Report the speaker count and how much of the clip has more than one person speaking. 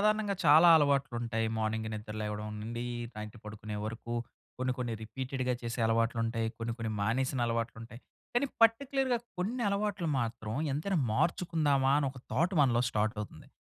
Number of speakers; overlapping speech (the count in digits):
1, no overlap